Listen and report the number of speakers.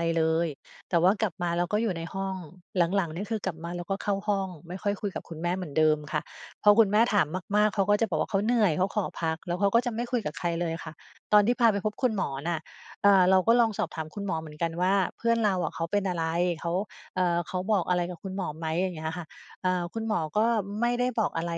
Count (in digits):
1